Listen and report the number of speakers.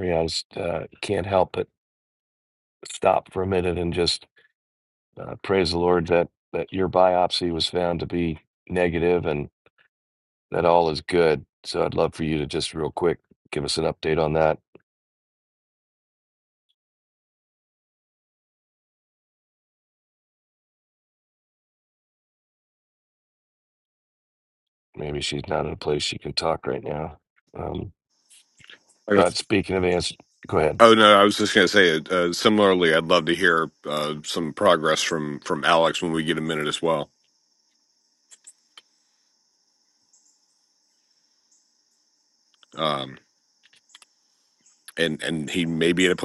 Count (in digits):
2